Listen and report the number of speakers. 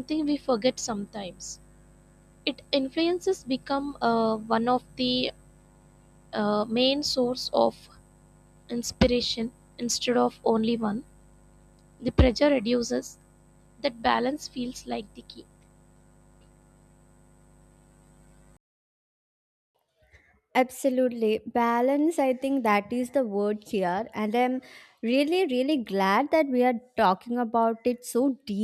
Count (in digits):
2